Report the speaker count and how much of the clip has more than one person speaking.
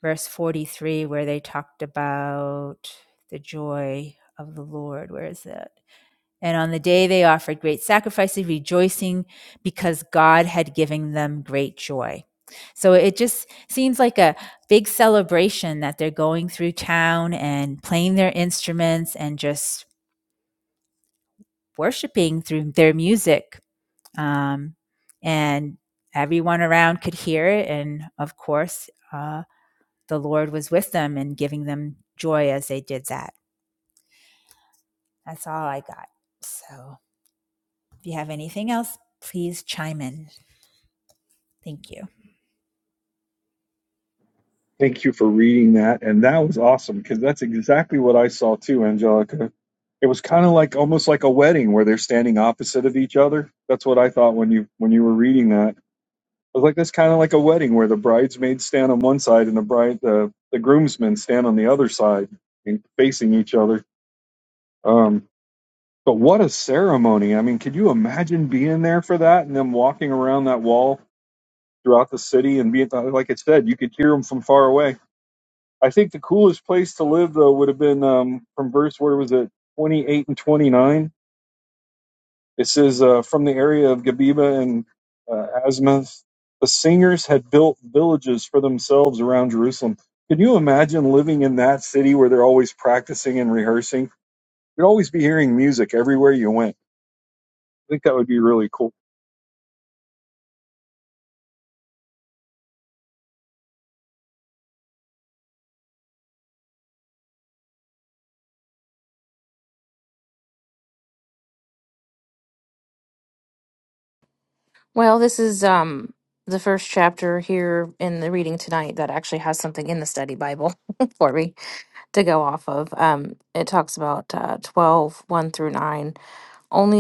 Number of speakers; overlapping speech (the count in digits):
3, no overlap